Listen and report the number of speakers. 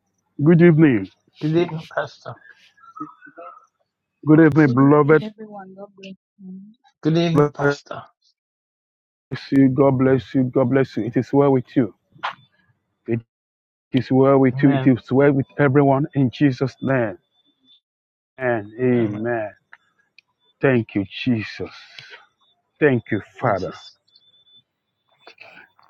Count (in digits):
3